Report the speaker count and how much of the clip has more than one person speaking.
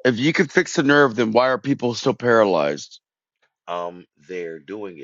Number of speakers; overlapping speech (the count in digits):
2, no overlap